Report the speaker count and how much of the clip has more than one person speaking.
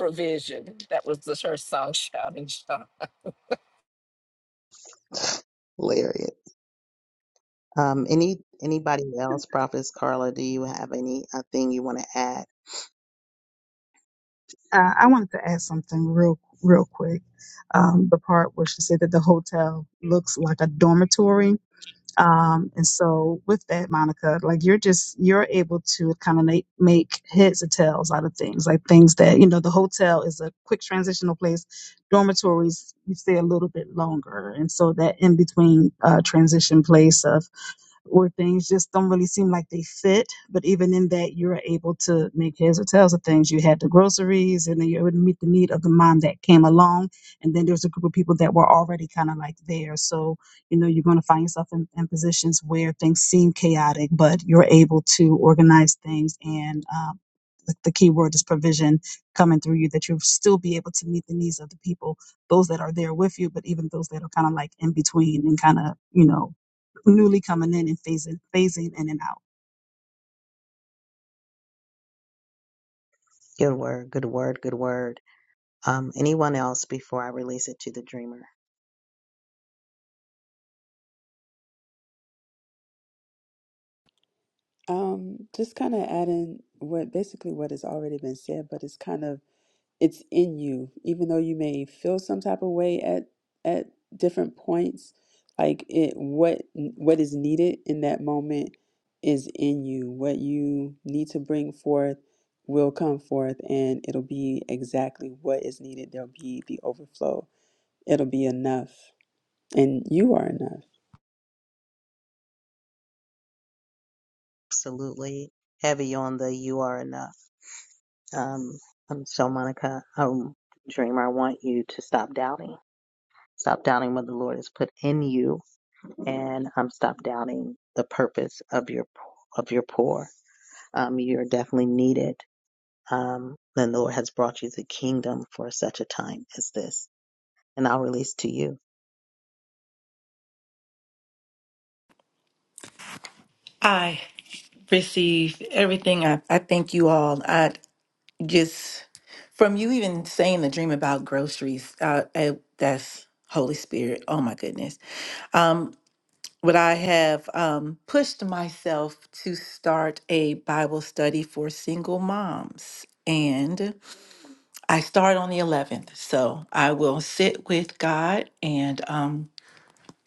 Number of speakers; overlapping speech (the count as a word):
five, no overlap